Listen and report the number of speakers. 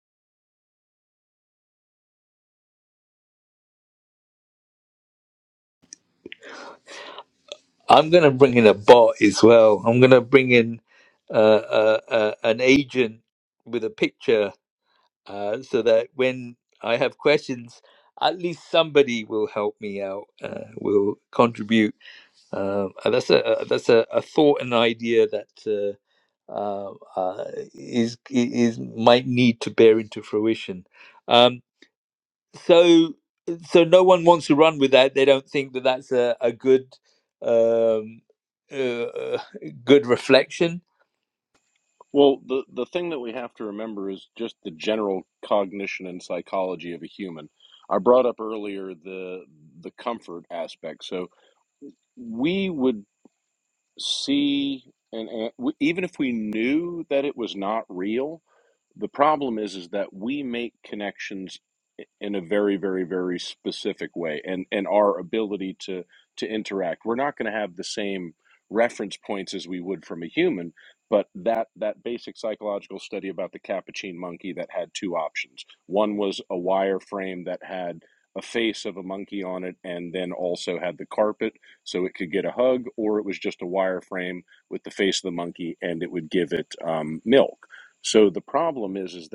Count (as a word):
two